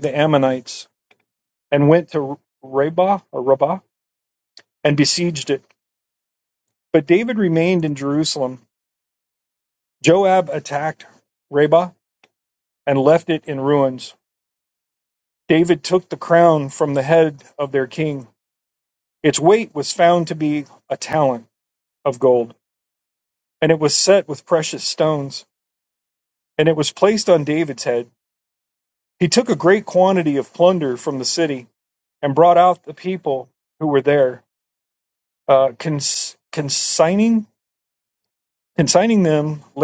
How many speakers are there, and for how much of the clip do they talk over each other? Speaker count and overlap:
one, no overlap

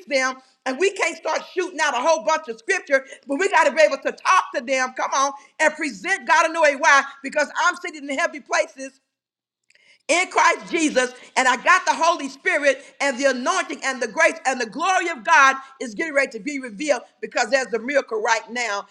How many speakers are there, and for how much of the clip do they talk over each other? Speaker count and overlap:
one, no overlap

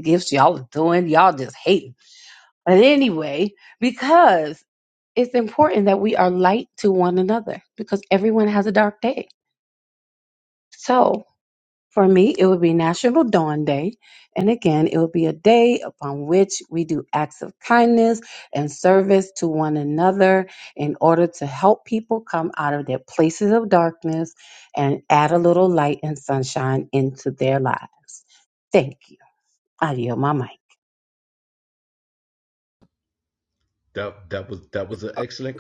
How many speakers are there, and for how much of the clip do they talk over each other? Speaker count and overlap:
two, no overlap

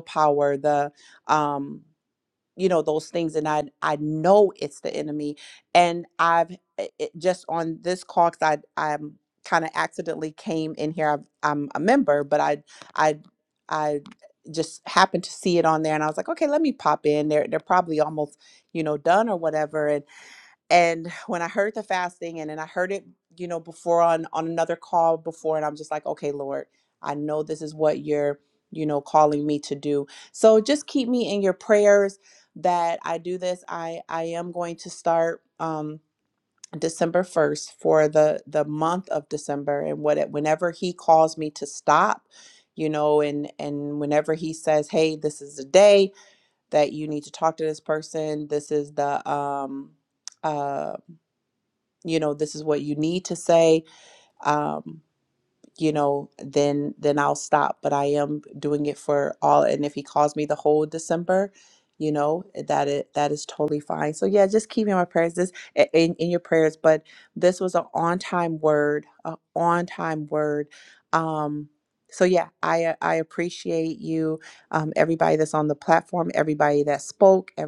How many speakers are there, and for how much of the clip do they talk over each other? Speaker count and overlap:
one, no overlap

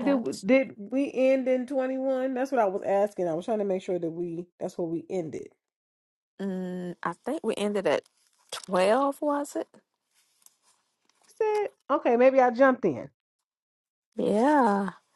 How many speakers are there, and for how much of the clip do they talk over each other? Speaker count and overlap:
two, about 1%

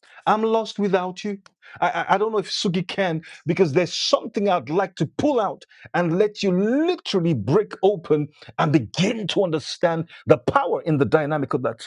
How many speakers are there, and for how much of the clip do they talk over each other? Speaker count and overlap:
one, no overlap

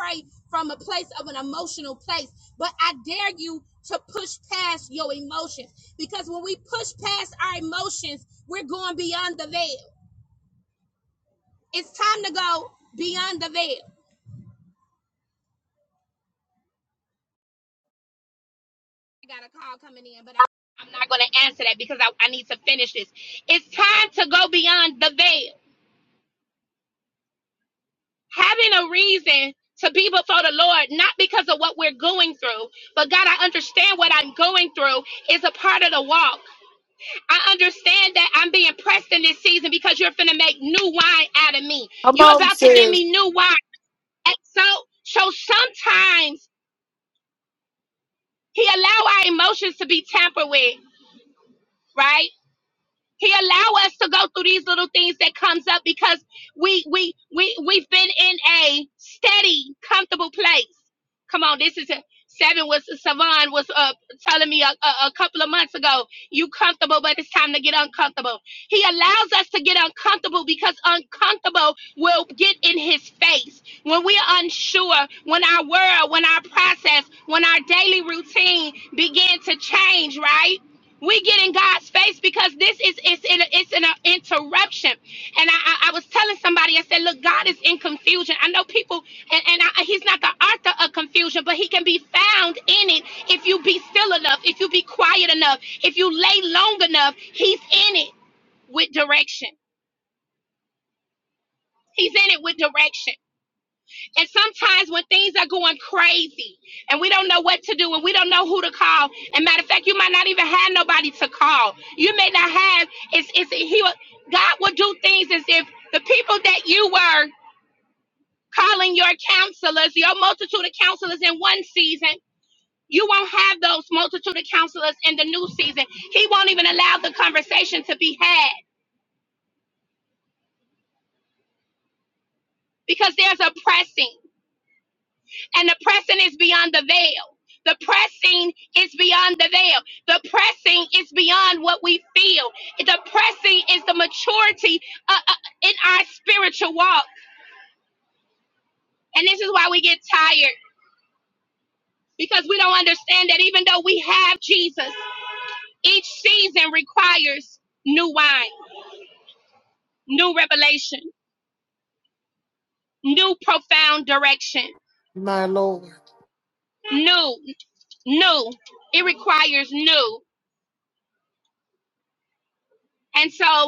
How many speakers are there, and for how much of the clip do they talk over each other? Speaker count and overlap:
two, about 1%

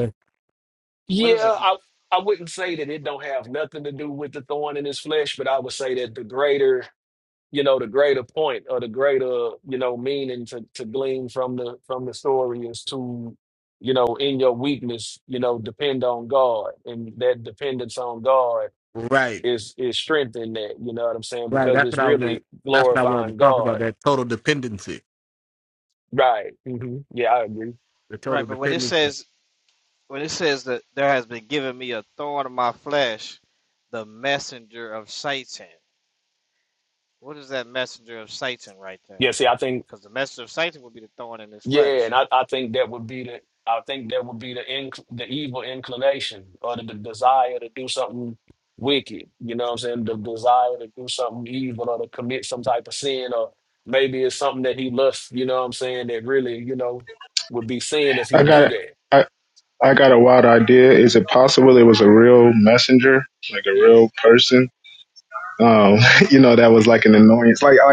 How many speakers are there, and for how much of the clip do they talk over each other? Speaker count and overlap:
four, about 6%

